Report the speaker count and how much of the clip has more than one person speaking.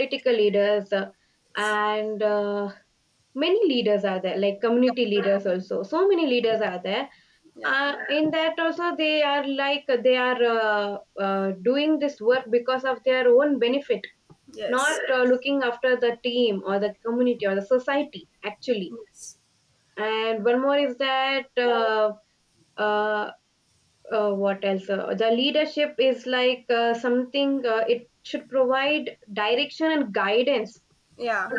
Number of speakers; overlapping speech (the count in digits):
2, about 1%